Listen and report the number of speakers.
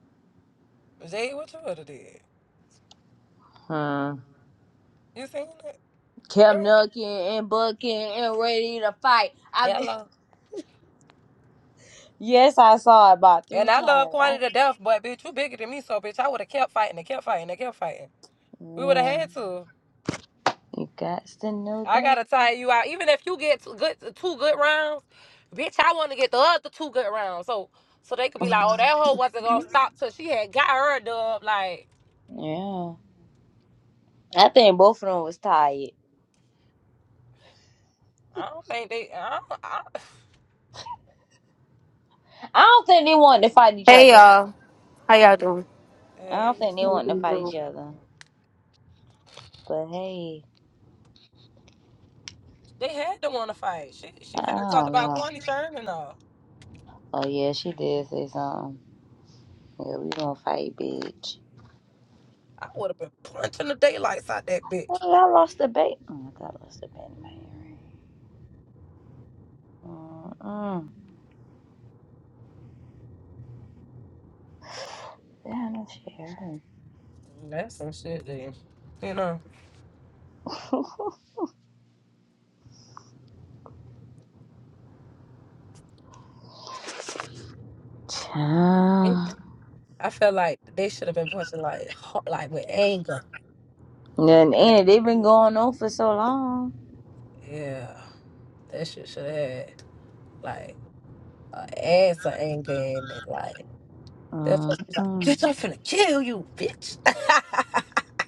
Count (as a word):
three